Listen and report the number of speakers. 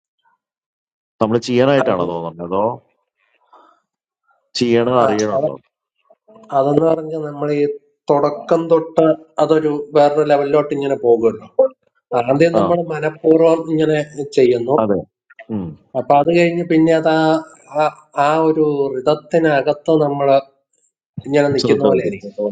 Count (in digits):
2